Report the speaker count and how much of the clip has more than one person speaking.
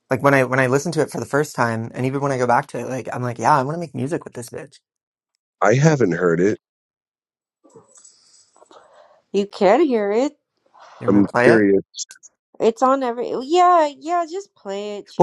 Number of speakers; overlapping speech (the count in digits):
3, about 4%